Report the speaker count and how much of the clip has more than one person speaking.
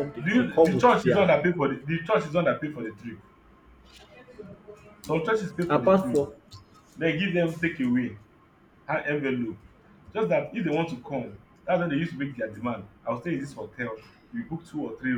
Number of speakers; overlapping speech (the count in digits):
2, about 11%